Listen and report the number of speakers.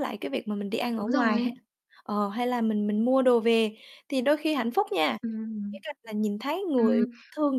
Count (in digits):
2